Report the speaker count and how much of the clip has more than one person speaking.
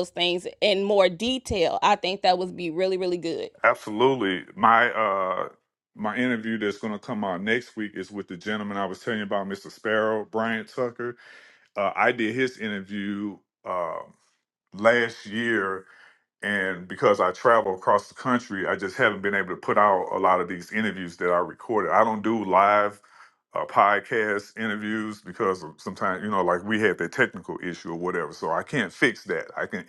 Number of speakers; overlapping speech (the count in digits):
2, no overlap